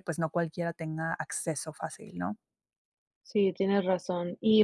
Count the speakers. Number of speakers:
2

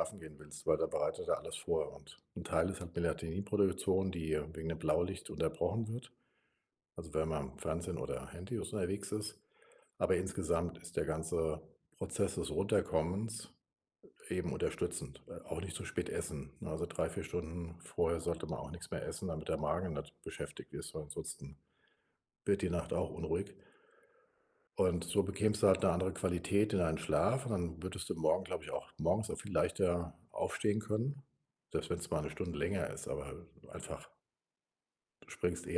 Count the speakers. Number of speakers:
1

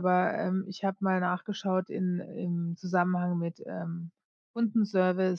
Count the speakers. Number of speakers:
1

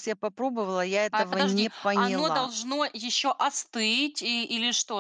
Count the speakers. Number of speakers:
2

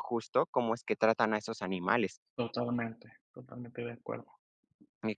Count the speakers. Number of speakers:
2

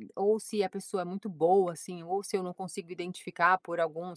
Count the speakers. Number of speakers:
1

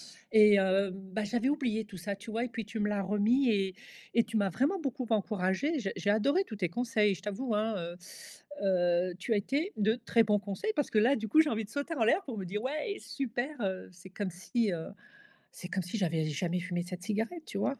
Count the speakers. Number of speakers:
1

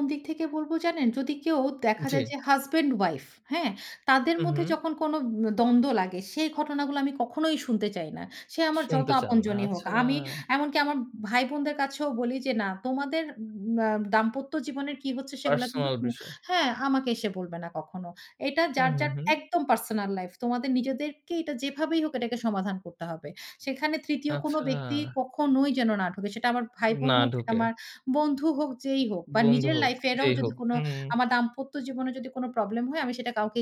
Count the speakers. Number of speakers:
2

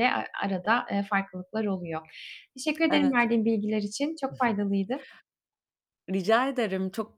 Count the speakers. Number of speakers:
2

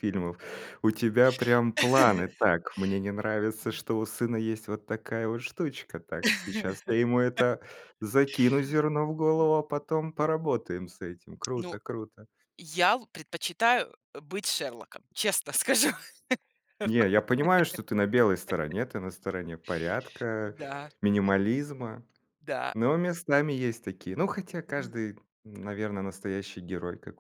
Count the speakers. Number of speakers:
2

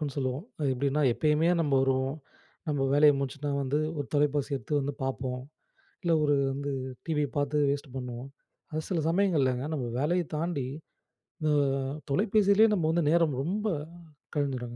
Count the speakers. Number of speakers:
1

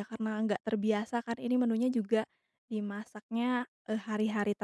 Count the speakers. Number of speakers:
1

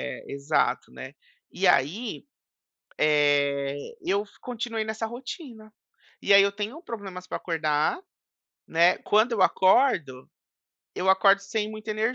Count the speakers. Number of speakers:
1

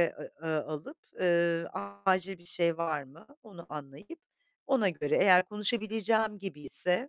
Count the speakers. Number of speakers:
1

